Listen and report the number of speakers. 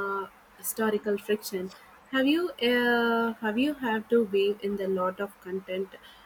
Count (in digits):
1